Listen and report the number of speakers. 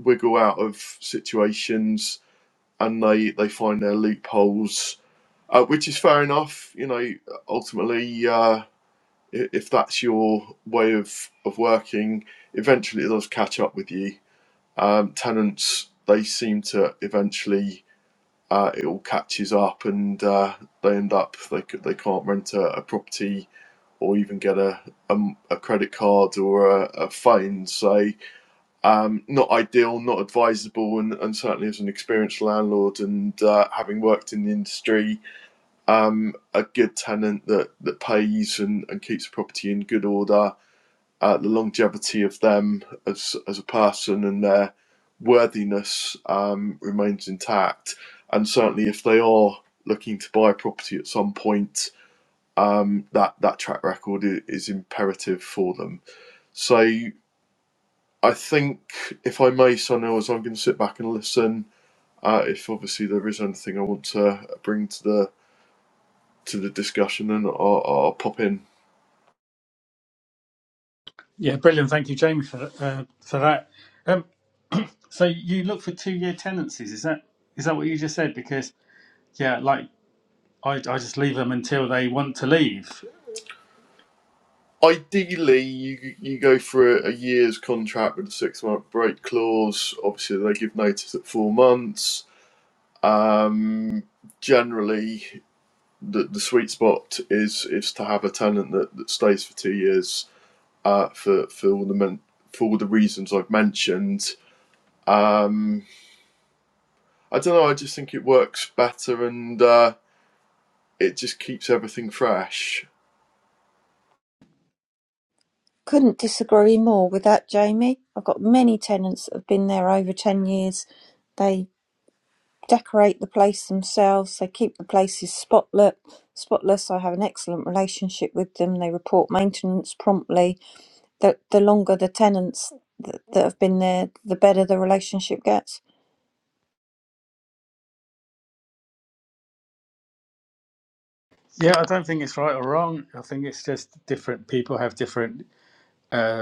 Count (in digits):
3